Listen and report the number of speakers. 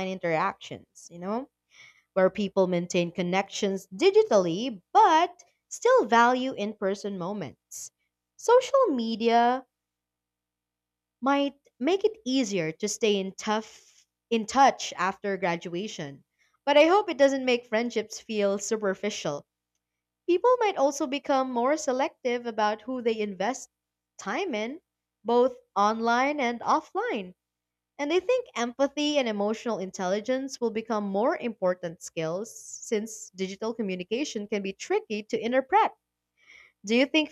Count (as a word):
one